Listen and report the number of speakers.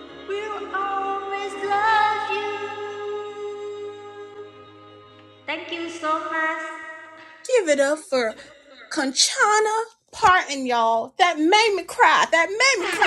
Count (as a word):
two